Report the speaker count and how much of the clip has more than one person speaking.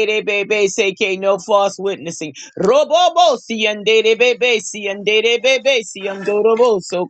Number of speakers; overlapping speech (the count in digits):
1, no overlap